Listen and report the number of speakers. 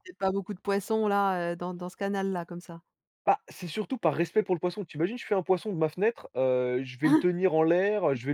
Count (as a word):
two